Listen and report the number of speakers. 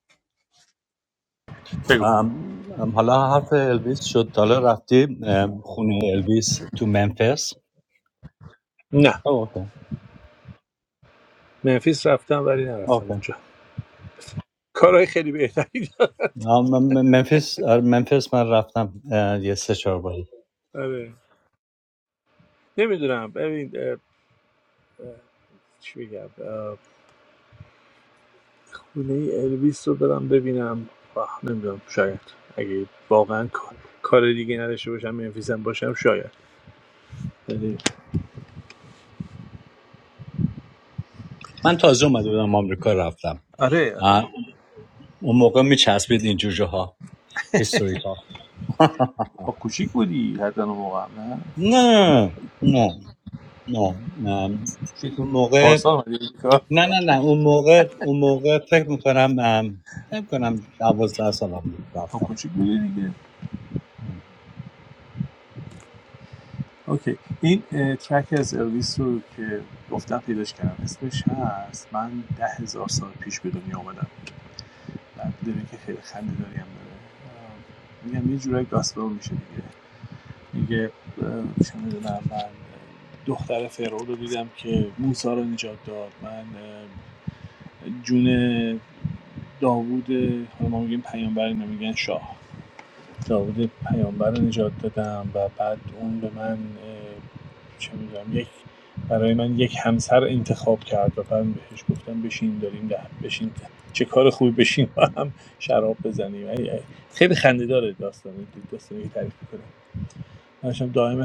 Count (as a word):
two